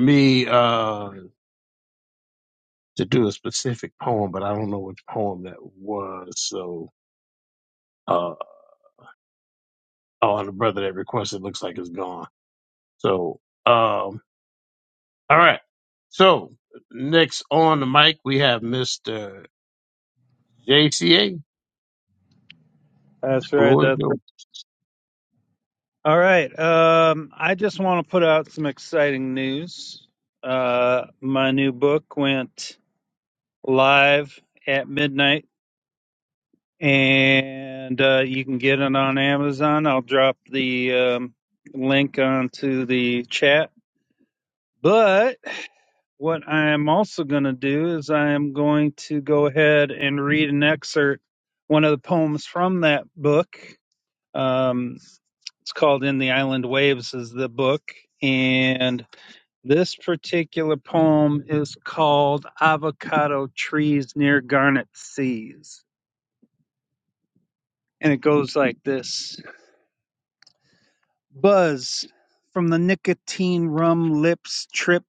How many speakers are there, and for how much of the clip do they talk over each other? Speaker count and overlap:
2, about 1%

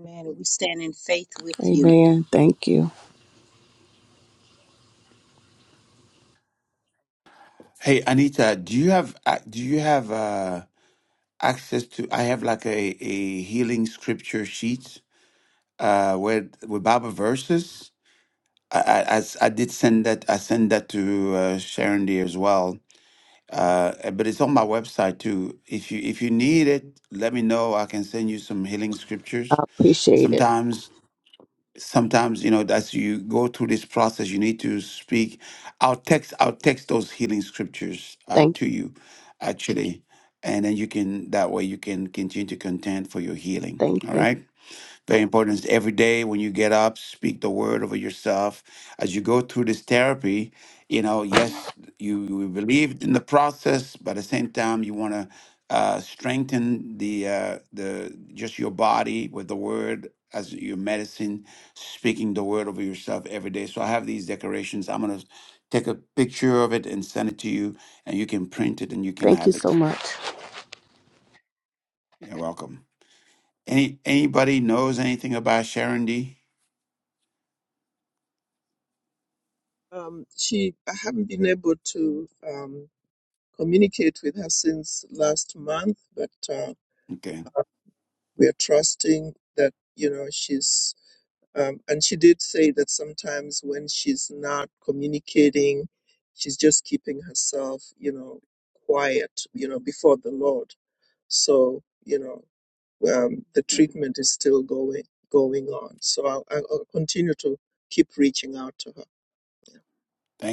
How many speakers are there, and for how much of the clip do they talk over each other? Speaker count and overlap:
4, about 2%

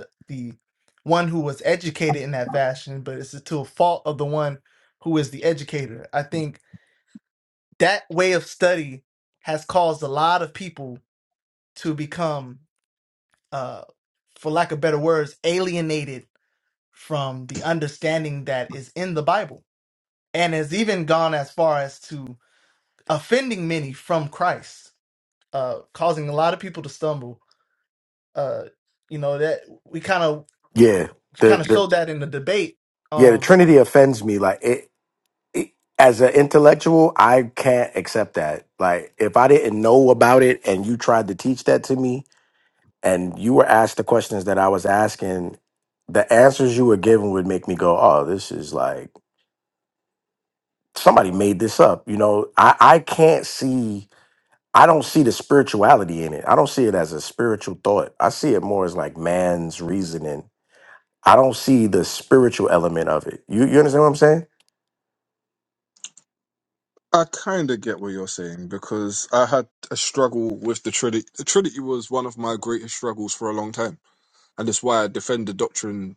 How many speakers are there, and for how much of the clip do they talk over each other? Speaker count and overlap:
3, about 1%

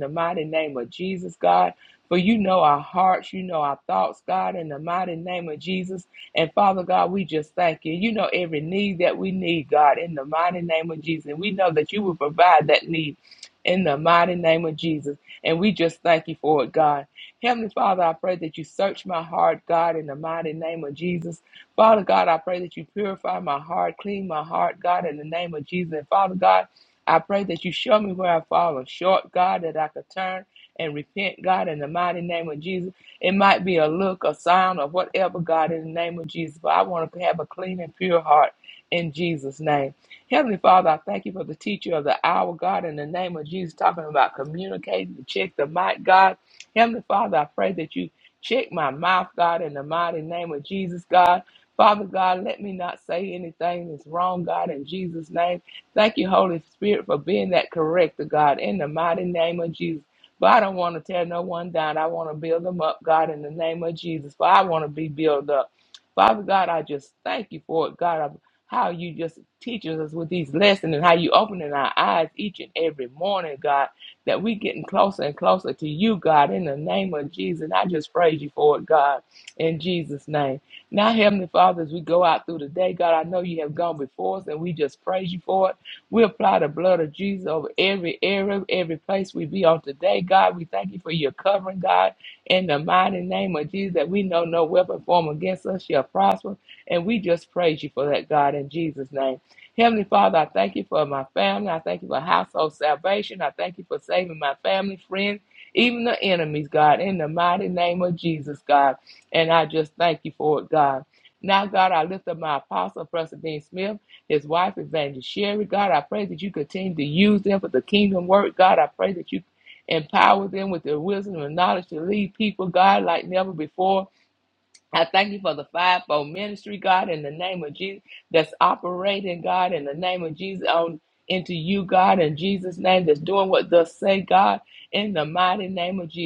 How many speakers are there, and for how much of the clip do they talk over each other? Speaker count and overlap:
1, no overlap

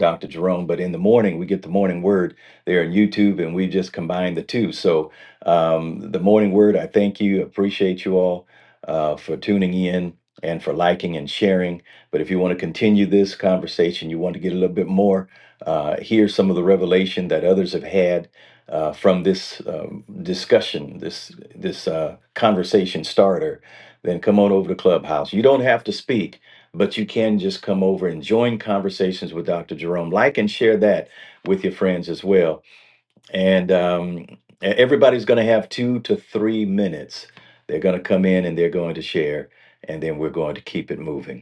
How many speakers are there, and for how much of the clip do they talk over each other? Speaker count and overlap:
1, no overlap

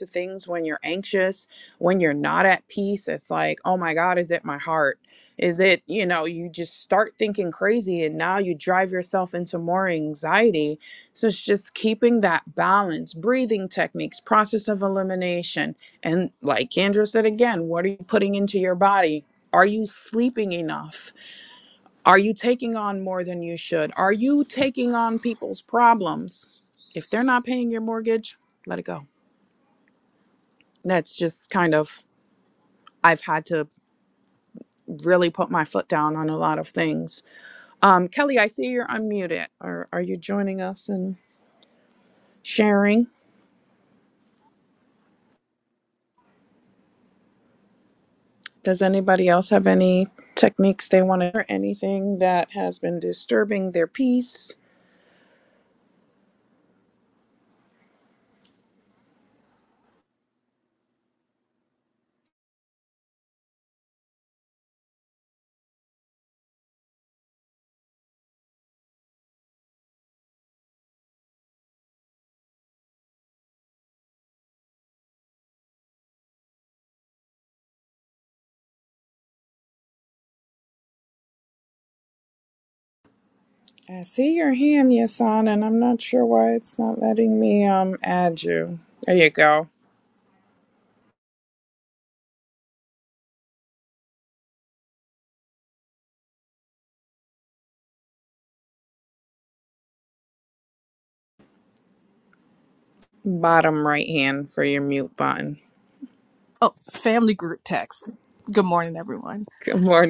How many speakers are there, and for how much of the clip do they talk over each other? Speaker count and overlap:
2, no overlap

